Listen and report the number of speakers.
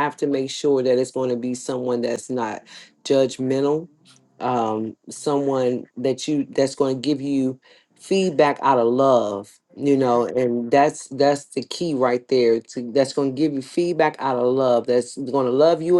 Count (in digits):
1